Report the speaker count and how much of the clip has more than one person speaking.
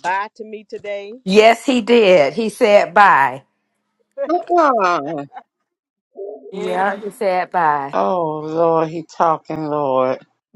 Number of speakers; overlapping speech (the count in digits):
3, about 3%